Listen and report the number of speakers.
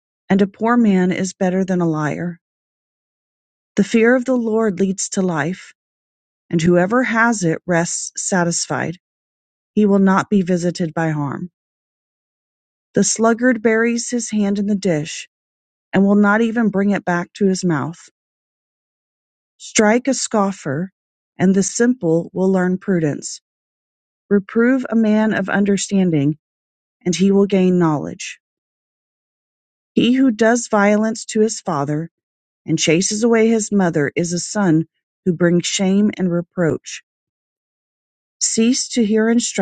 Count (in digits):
1